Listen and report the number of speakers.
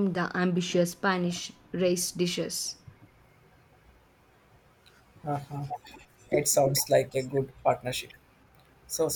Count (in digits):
2